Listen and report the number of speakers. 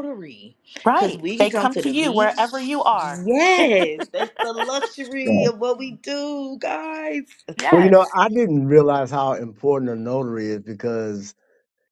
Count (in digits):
3